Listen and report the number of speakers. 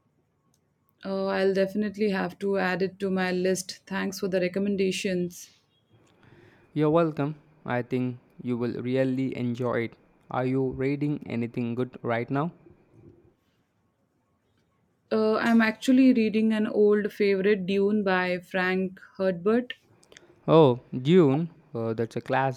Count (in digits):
2